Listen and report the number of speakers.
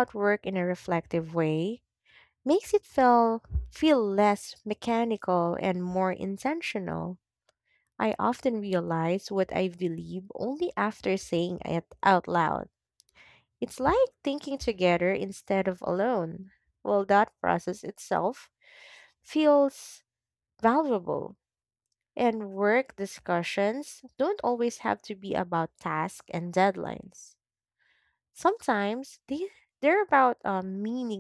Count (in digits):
1